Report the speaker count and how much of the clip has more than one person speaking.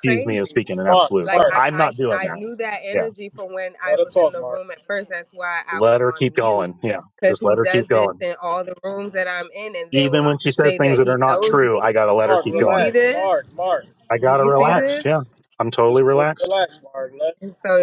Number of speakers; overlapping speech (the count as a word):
three, about 50%